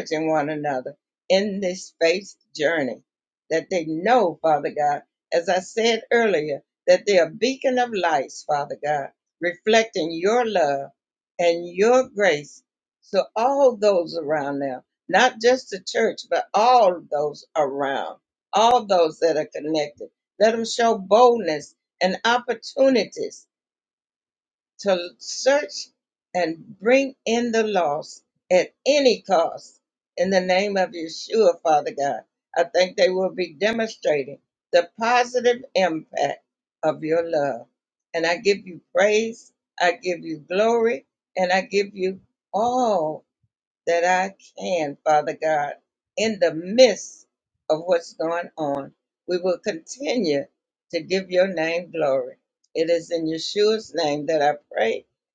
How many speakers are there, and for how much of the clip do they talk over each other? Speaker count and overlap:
one, no overlap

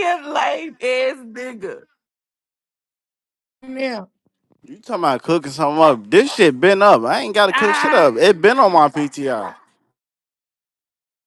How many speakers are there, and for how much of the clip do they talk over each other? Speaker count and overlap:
three, about 5%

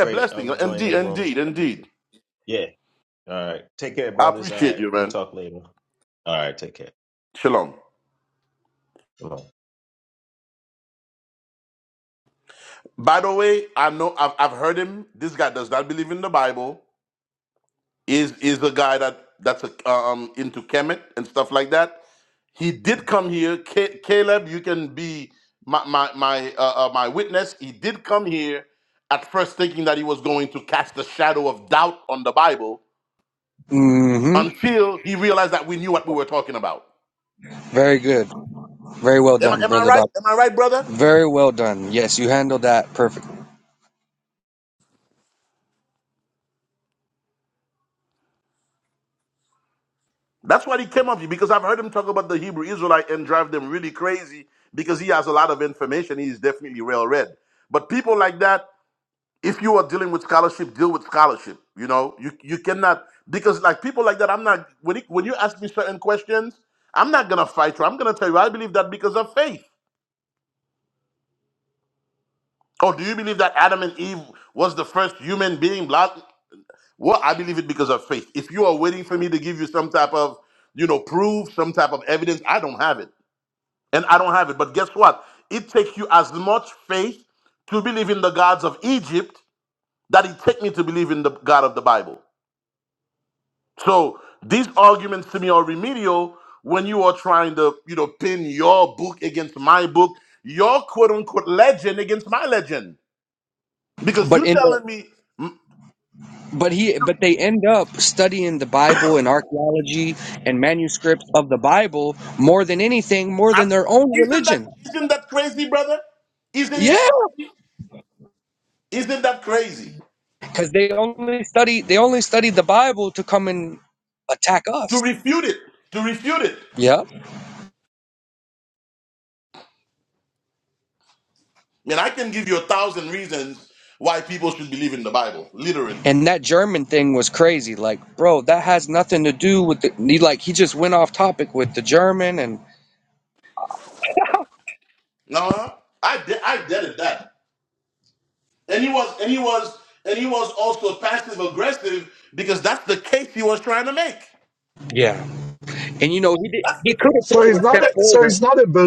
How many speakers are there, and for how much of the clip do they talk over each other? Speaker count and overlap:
four, about 3%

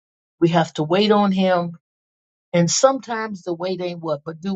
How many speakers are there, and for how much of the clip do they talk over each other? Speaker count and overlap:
one, no overlap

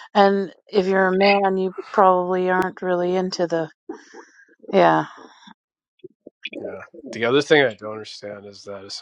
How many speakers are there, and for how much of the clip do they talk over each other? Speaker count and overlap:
two, no overlap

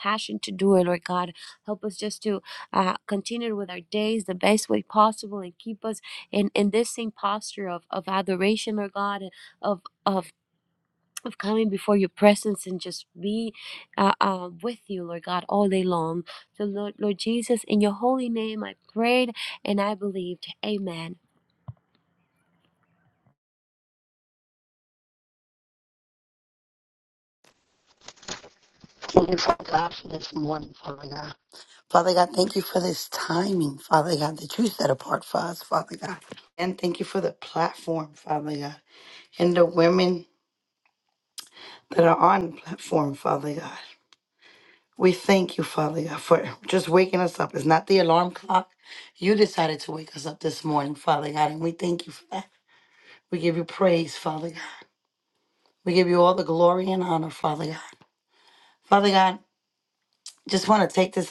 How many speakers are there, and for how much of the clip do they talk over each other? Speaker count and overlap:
two, no overlap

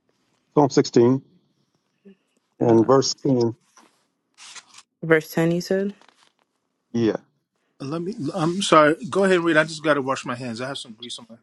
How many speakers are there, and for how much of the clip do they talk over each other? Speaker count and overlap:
three, about 3%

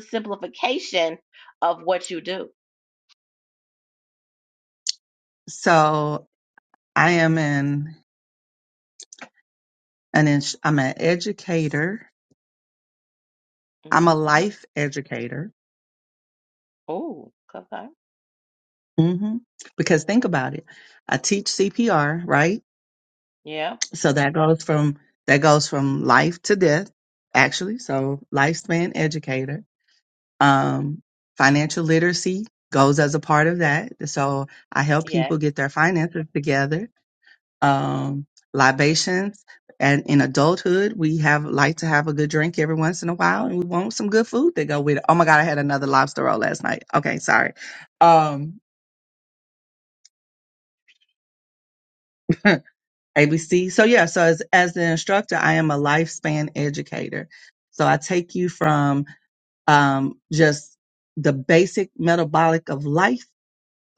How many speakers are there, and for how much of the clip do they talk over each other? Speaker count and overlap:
two, about 1%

